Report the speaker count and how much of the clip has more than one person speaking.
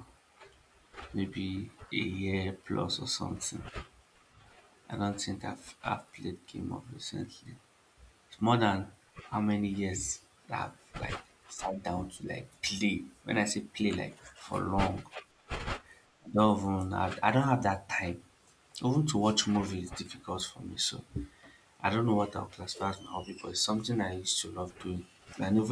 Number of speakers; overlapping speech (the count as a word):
one, no overlap